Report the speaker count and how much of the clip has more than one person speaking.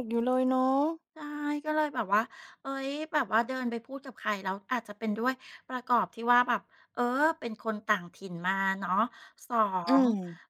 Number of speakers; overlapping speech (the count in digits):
2, about 2%